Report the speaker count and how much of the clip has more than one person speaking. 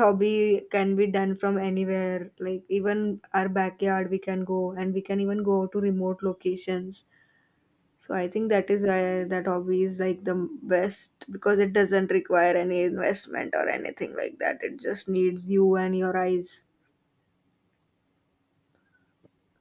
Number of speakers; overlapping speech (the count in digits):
1, no overlap